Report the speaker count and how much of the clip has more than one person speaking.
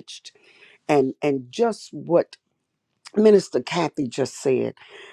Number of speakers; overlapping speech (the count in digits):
1, no overlap